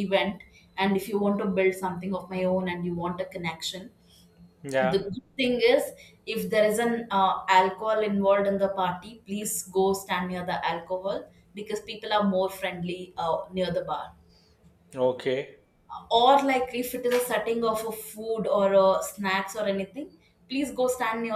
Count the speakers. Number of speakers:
two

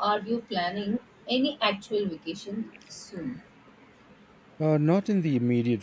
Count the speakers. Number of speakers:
two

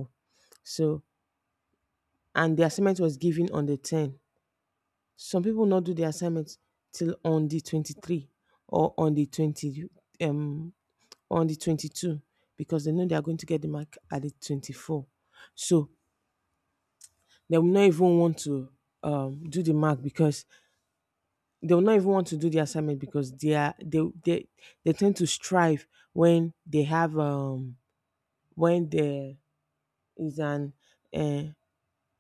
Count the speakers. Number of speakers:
one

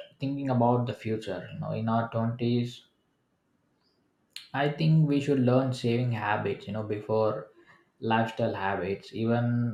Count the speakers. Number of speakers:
one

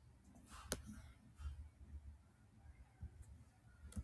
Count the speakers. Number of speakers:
zero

